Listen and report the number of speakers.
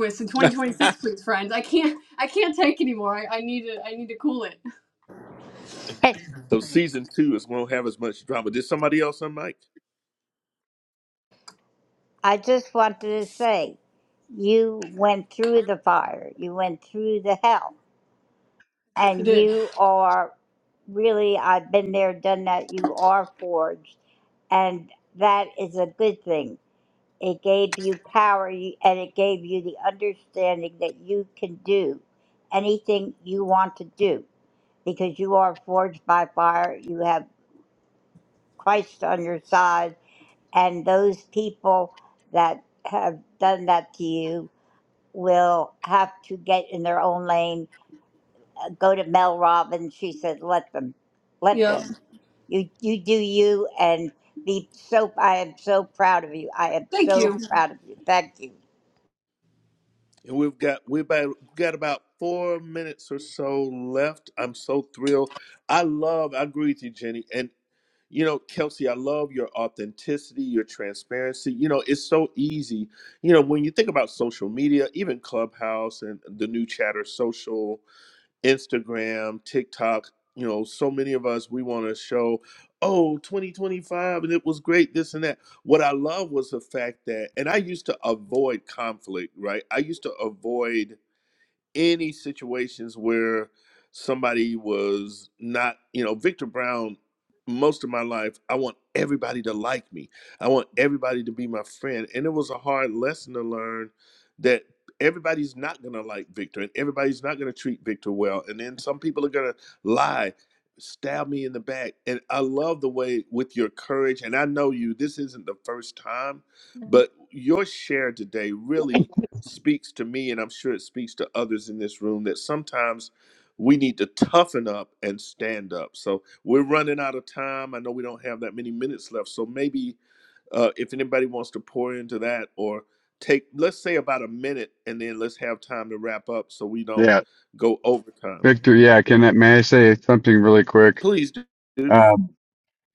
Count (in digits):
4